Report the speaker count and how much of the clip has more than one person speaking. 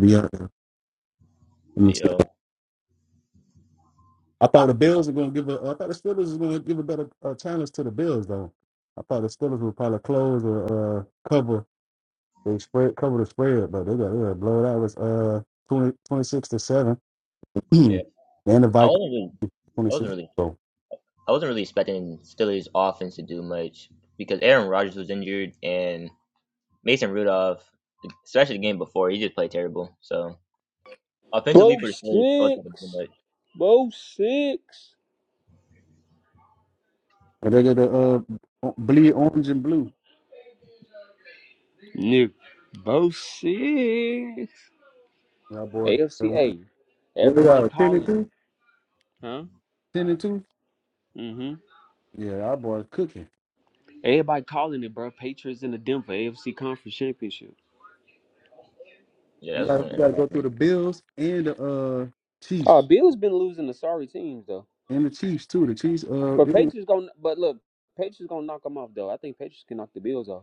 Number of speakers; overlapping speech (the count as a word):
three, about 7%